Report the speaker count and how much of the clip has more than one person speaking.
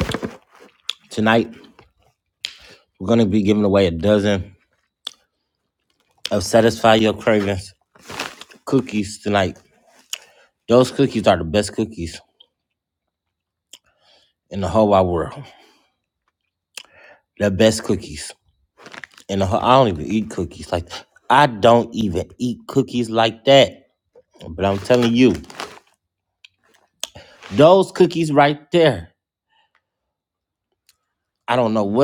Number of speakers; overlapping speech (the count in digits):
1, no overlap